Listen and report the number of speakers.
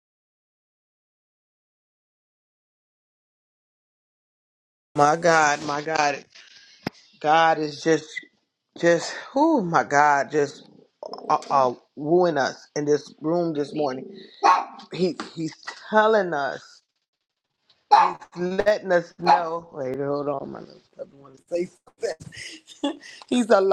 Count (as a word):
one